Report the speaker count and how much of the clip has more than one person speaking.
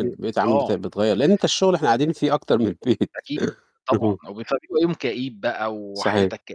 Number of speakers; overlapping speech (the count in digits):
2, about 20%